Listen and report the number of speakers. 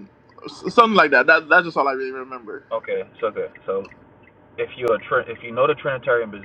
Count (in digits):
2